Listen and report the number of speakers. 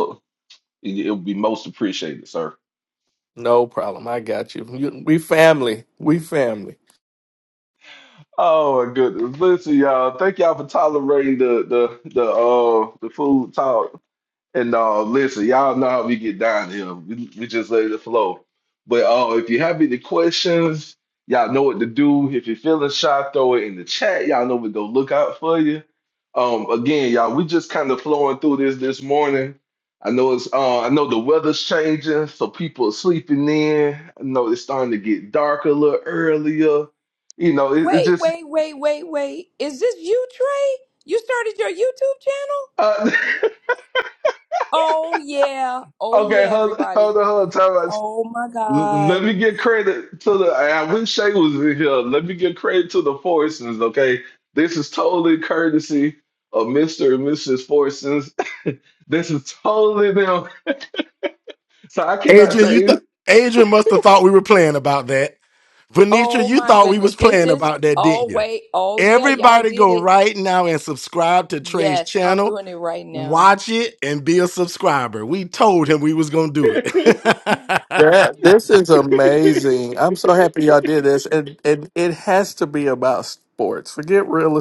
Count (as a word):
four